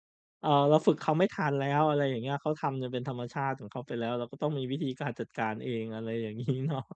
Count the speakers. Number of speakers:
1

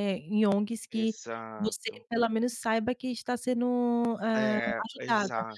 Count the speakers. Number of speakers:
2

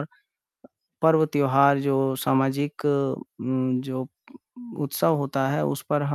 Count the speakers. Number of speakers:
1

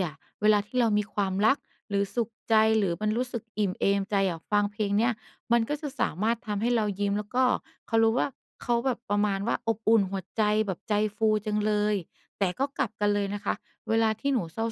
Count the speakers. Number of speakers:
1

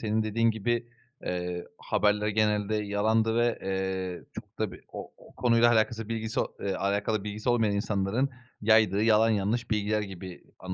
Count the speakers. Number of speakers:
1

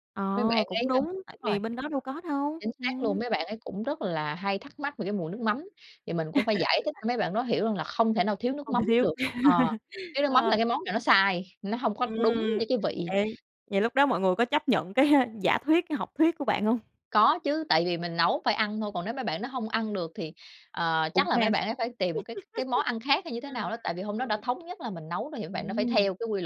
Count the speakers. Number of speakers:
2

